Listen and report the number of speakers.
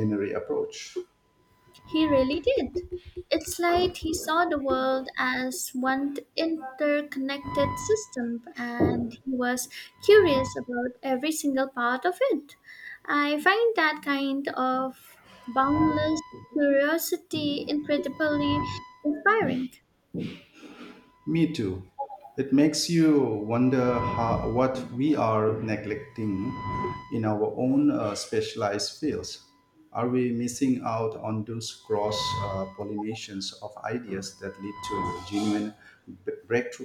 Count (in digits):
2